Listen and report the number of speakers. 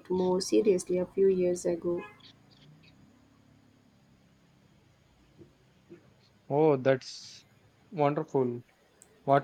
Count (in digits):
2